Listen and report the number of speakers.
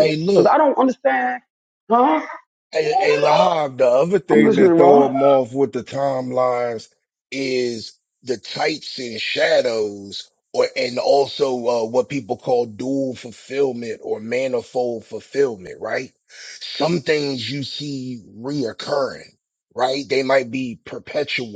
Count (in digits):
2